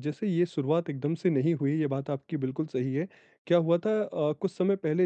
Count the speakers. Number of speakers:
1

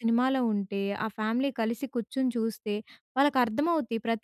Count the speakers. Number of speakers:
1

